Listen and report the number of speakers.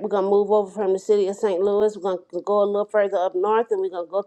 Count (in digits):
1